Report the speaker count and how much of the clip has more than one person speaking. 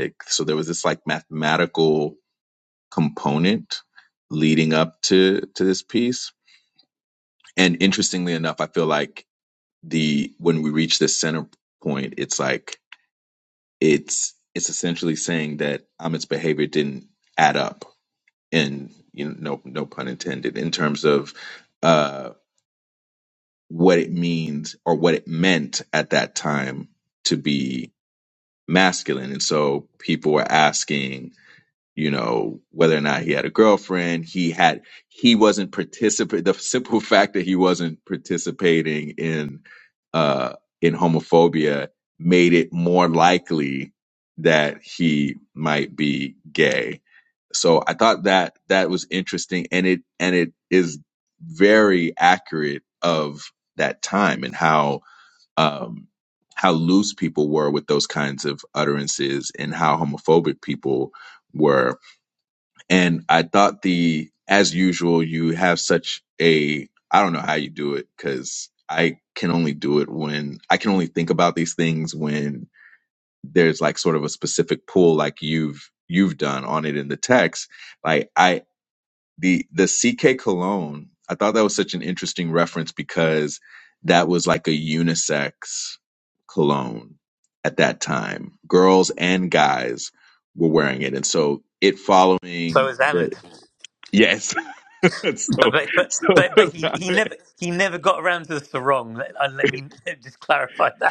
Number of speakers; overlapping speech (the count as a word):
two, about 1%